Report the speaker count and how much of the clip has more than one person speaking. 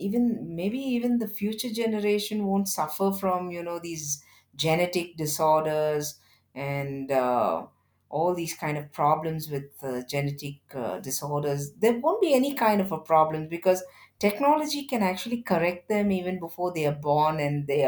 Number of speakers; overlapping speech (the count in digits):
1, no overlap